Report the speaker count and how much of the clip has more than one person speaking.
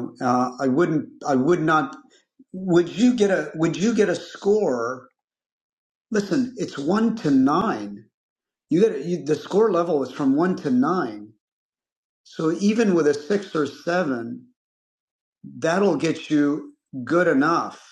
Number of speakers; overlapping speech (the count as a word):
one, no overlap